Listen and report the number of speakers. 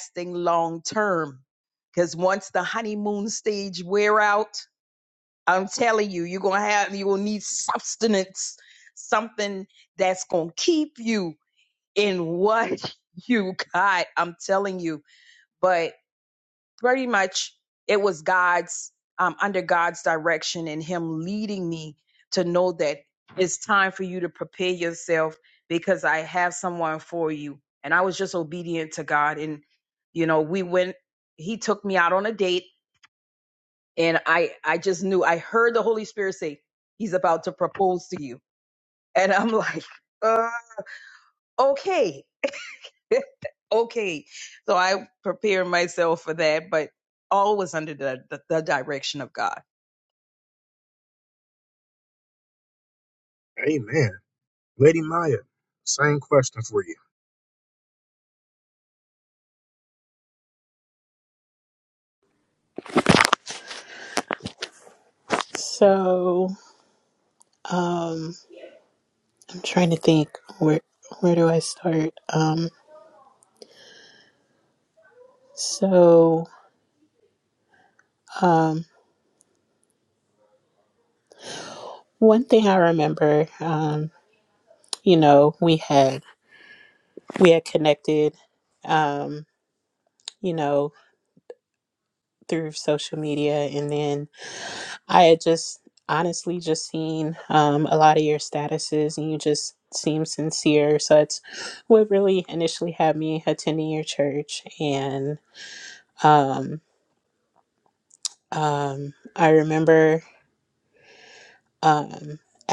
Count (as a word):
three